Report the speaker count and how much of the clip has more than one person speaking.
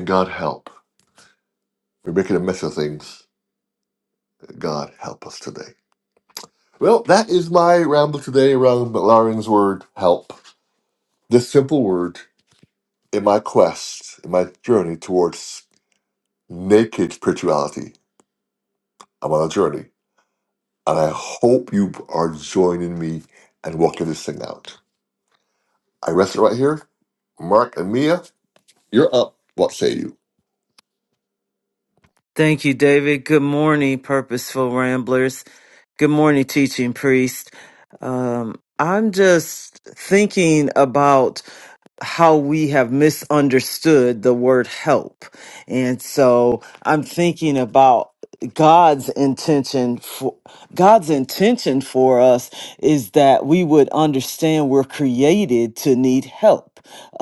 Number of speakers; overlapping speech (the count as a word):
two, no overlap